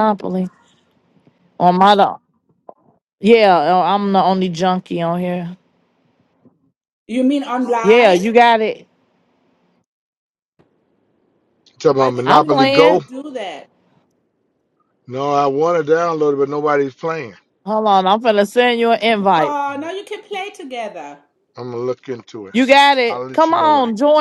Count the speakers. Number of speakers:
three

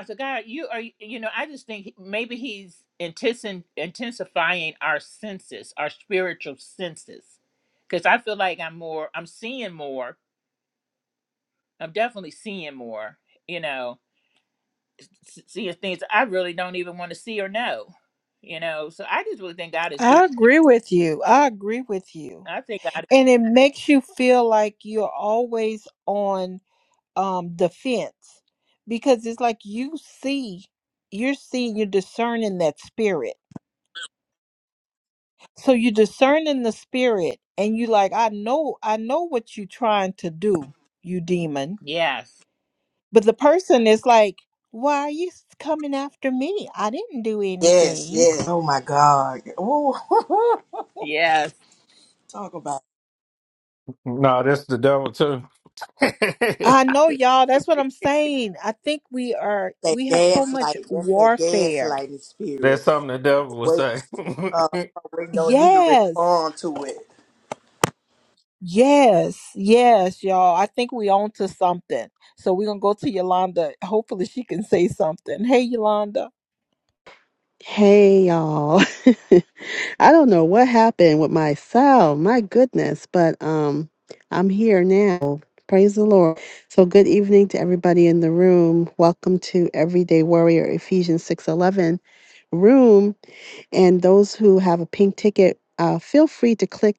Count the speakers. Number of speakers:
five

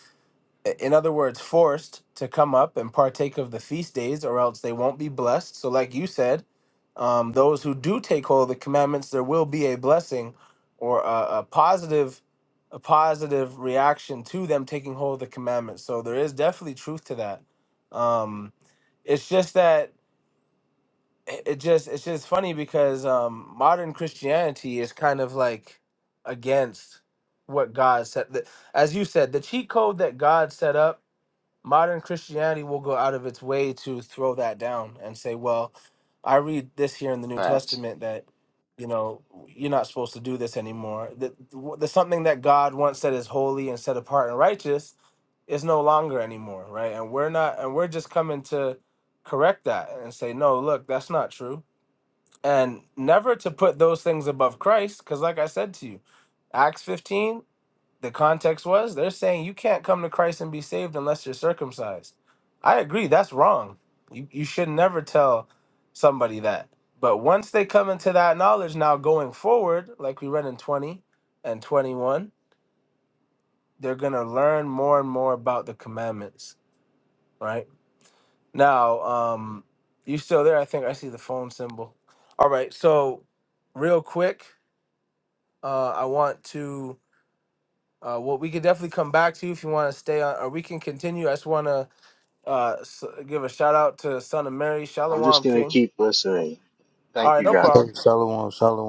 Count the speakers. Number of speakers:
three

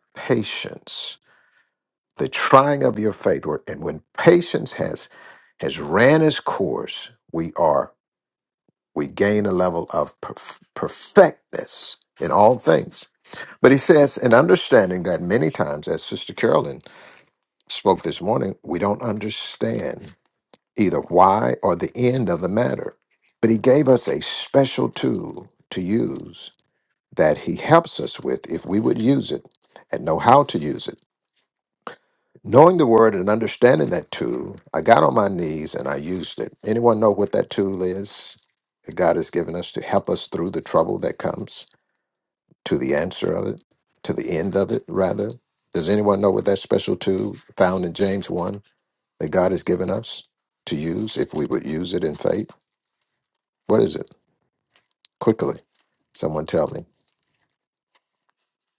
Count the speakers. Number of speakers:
one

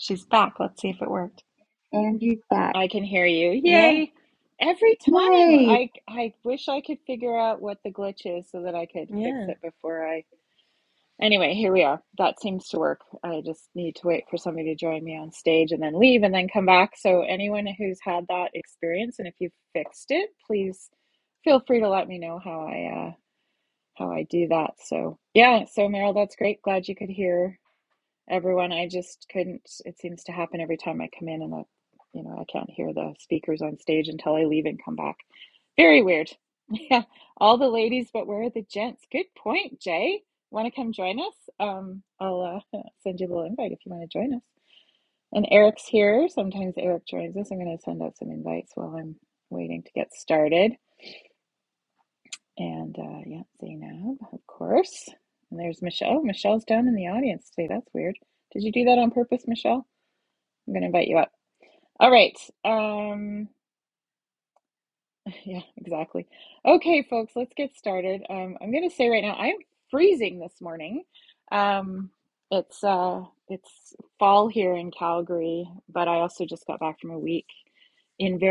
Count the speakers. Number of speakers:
three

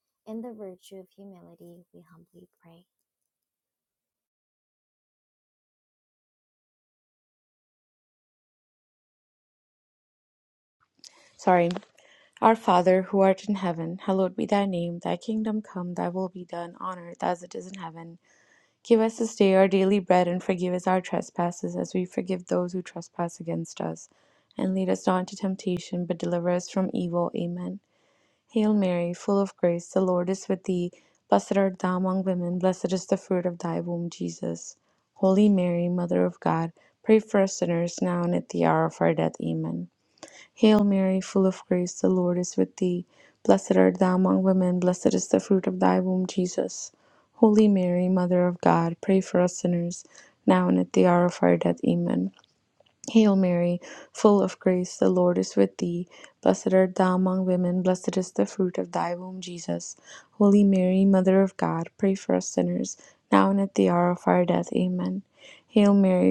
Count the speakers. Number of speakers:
two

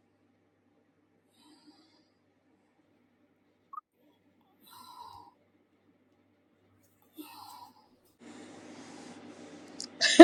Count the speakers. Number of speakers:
zero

